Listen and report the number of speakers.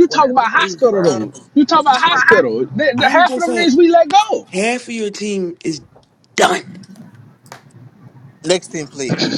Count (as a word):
three